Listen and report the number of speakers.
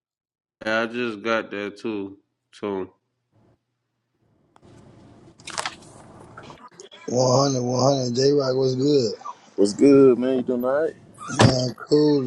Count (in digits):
3